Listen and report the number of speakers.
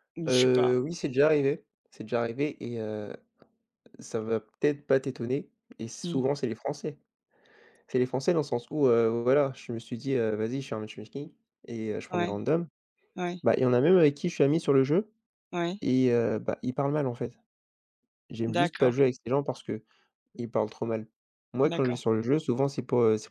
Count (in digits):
2